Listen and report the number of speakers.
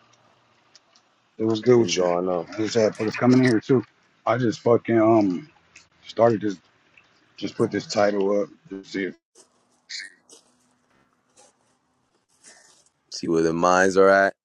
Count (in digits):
2